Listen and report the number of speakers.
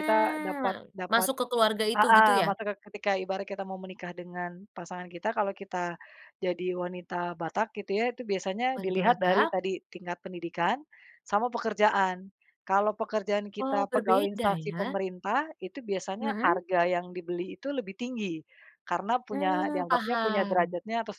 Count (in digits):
2